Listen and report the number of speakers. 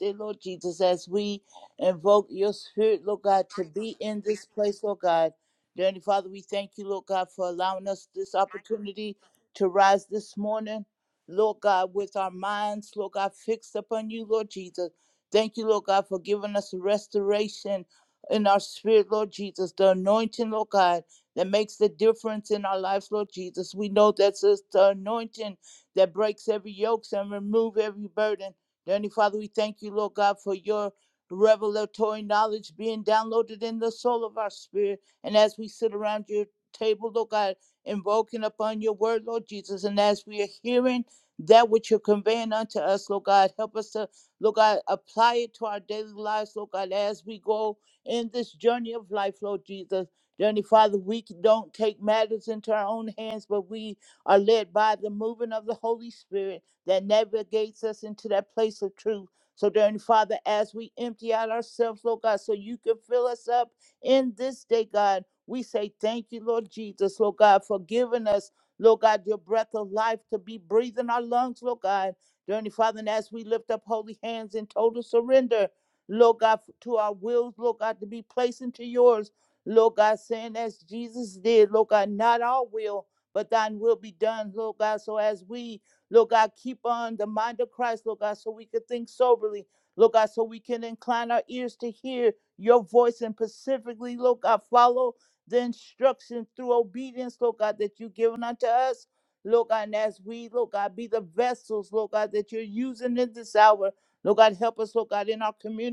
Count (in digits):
1